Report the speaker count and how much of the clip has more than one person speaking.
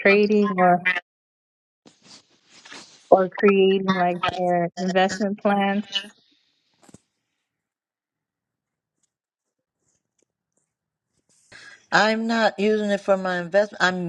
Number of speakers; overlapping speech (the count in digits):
2, no overlap